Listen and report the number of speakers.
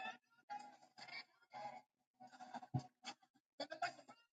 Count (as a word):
zero